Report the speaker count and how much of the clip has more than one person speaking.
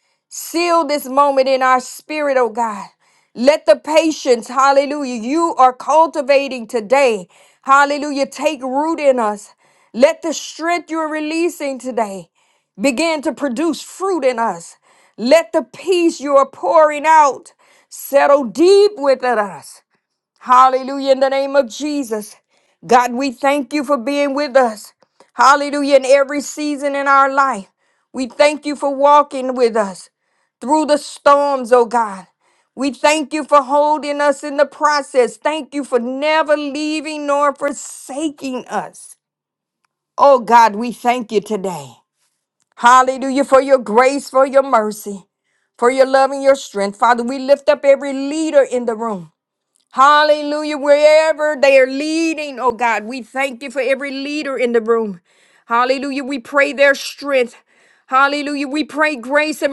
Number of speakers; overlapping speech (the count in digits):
1, no overlap